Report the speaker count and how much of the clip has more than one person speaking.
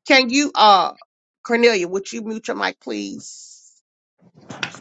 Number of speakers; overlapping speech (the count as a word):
one, no overlap